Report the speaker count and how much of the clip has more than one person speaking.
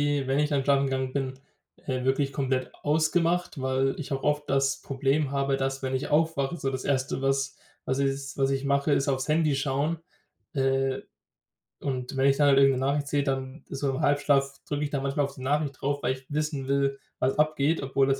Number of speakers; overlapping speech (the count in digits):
1, no overlap